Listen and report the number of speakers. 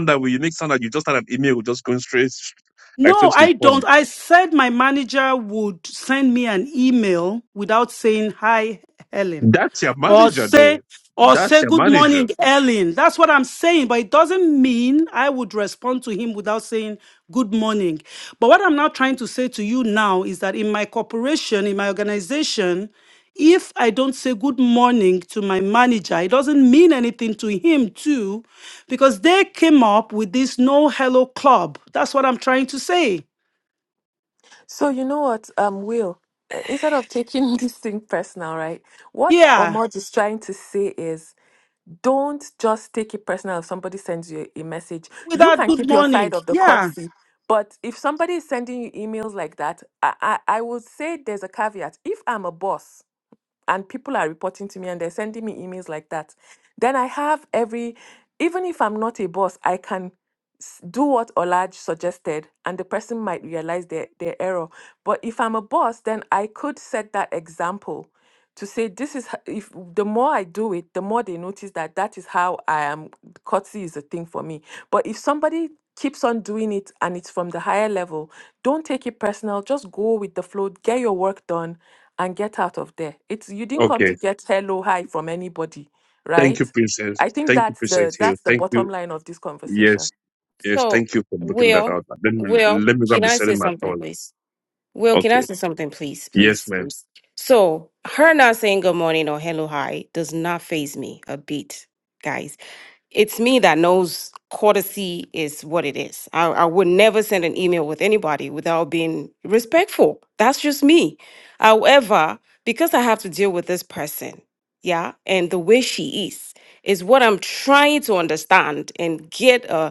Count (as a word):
four